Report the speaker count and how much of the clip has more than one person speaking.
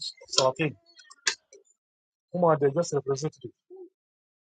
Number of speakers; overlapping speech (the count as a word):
one, no overlap